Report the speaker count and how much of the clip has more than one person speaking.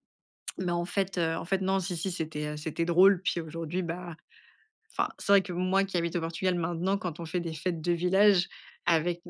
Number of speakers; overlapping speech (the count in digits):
1, no overlap